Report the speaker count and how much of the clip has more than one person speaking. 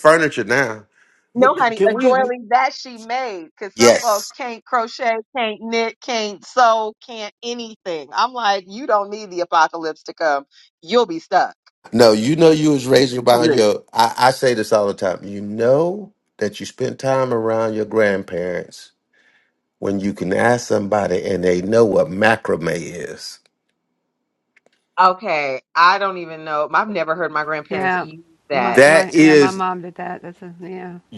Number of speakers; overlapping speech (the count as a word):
three, about 9%